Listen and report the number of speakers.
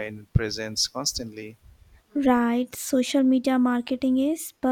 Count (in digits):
2